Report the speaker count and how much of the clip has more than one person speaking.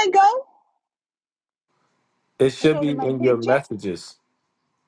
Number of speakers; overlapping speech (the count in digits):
2, about 21%